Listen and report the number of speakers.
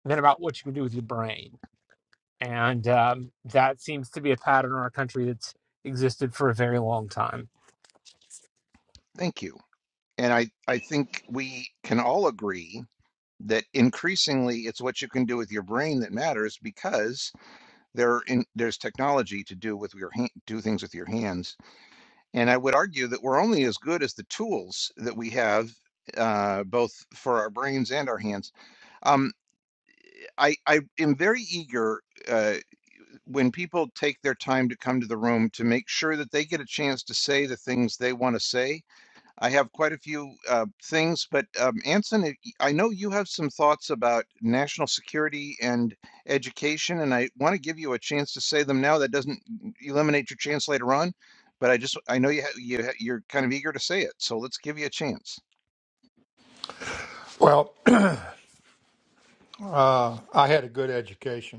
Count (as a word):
three